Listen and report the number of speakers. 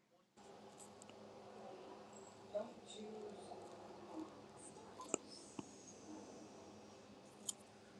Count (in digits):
0